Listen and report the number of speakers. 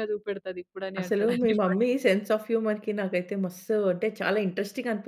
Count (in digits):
2